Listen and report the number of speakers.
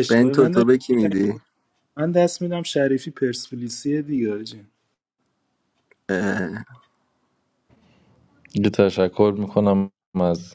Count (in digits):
3